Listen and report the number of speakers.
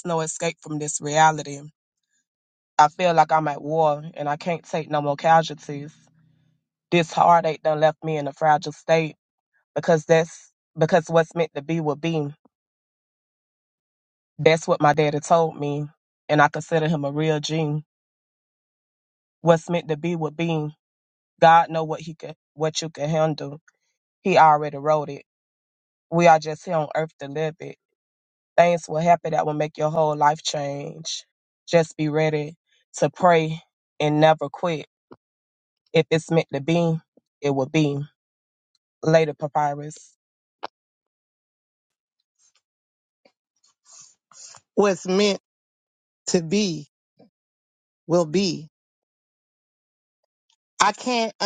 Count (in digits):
2